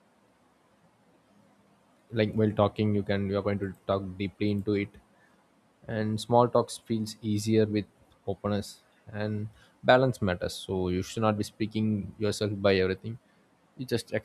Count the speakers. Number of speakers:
1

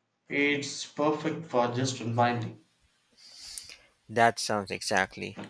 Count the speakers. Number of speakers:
2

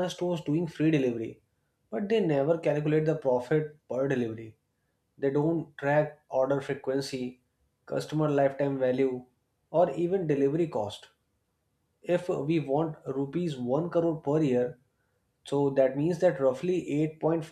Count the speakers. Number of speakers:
1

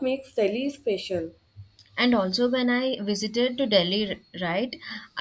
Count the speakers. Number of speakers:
2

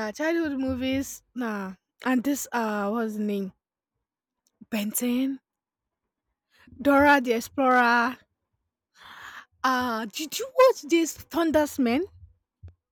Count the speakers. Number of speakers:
1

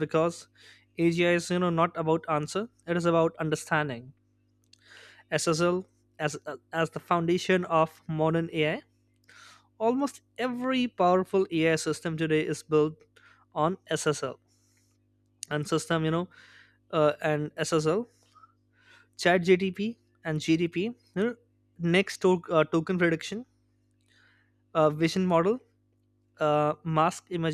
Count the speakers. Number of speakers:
1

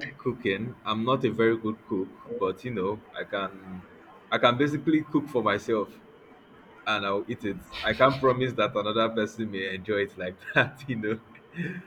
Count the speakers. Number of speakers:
1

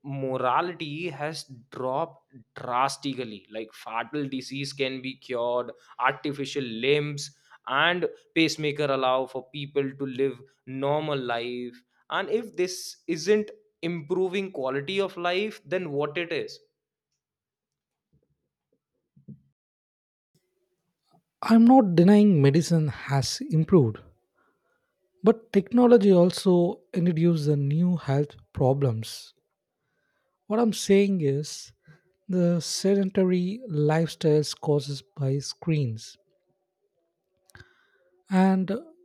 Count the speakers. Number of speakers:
2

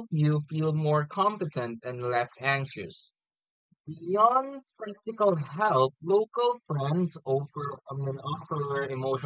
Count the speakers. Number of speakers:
1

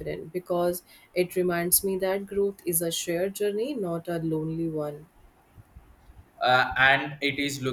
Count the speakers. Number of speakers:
2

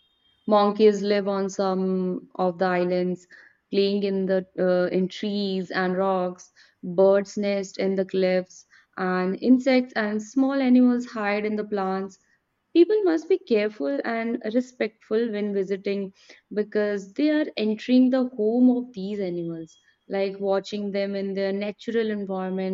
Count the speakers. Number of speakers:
1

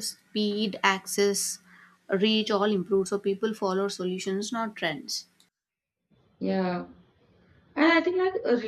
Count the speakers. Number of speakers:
2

